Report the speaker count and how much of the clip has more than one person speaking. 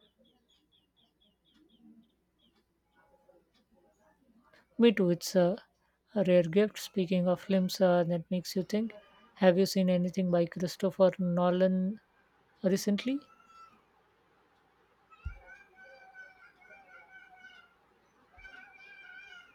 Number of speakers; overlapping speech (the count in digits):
1, no overlap